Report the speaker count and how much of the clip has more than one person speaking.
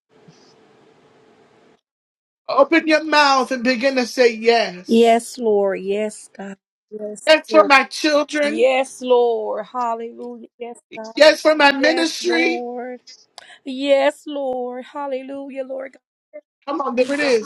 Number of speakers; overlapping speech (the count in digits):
2, about 10%